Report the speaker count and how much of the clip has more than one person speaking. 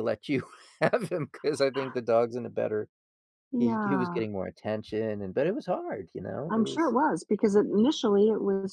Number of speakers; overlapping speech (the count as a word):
two, about 11%